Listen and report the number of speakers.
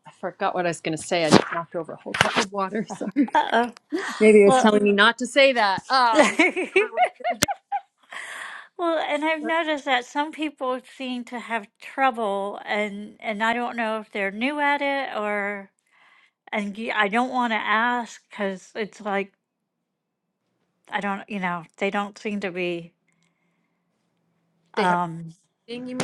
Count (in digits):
2